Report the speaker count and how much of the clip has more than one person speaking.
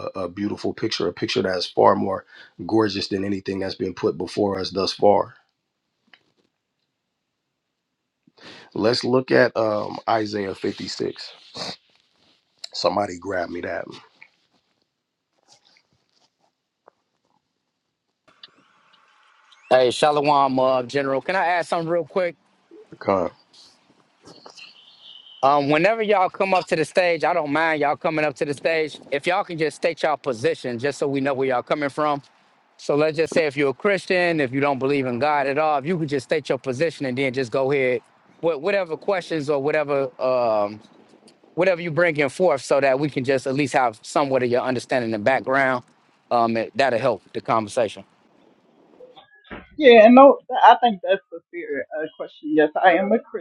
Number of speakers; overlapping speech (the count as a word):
three, no overlap